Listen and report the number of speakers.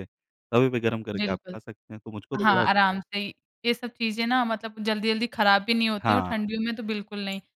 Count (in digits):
2